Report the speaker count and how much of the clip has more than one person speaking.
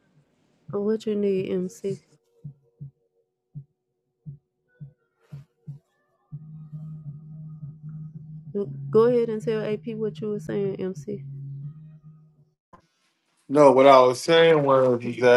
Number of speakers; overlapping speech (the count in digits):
2, no overlap